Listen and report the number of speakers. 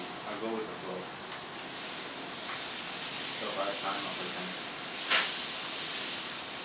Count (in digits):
1